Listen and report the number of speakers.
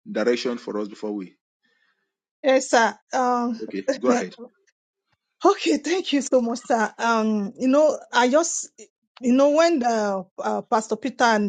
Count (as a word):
two